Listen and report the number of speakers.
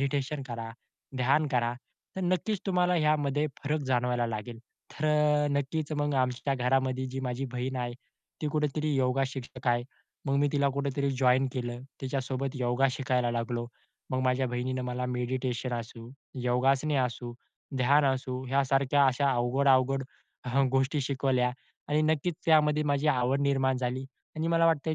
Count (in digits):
1